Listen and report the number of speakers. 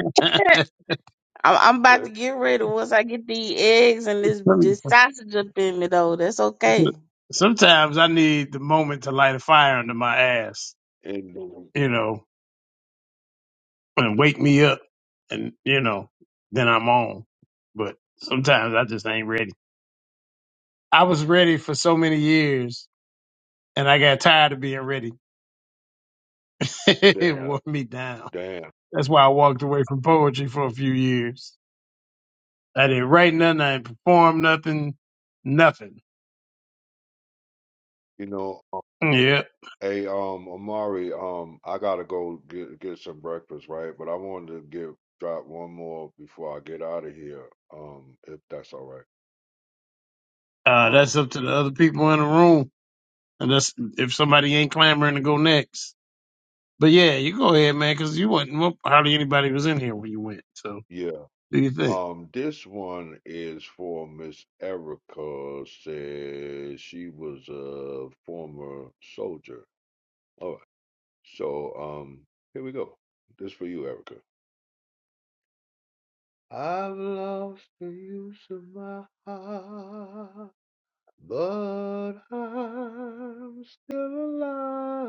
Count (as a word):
three